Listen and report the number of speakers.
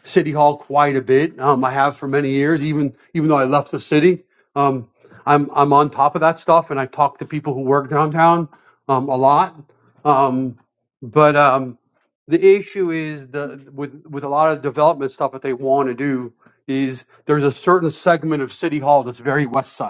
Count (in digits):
1